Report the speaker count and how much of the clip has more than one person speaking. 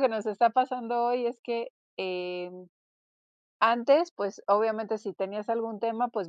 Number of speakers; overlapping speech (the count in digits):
1, no overlap